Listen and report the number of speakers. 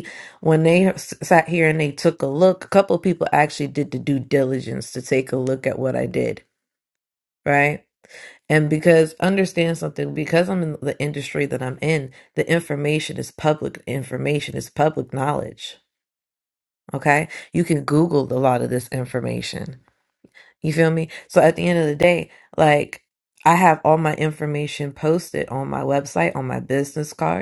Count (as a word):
one